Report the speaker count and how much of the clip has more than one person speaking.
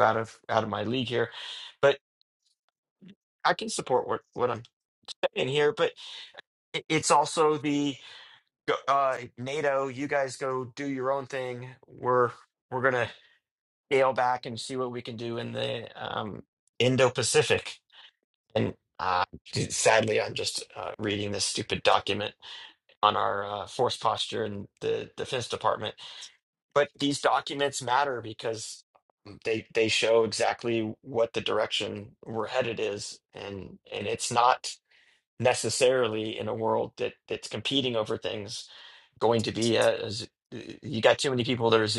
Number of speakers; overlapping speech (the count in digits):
1, no overlap